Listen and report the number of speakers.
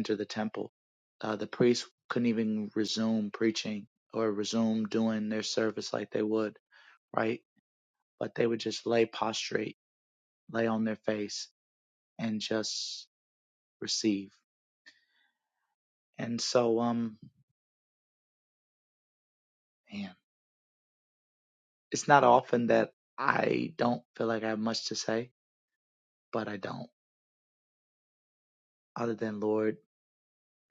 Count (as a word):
one